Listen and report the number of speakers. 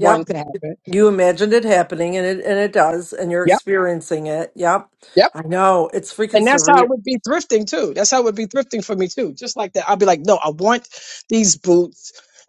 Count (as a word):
two